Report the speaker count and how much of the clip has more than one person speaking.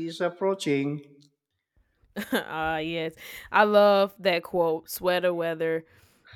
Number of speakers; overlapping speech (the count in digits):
2, no overlap